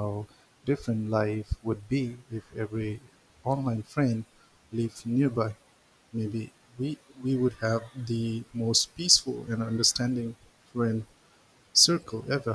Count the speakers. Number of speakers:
1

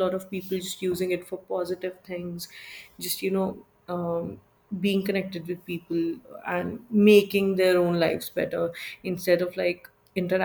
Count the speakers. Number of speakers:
1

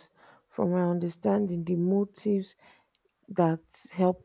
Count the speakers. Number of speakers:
1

